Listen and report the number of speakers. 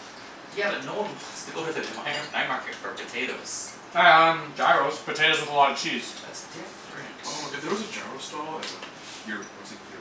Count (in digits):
4